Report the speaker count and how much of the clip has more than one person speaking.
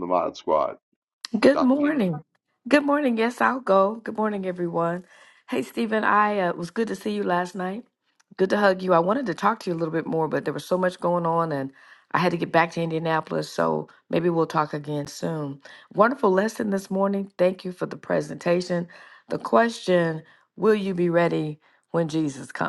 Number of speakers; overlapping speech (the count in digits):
2, about 2%